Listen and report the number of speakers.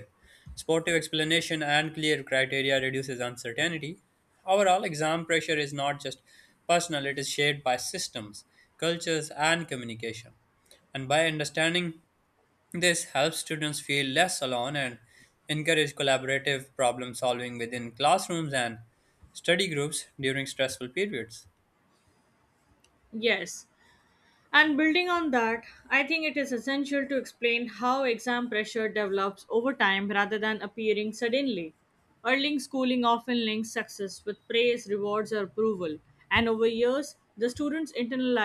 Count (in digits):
2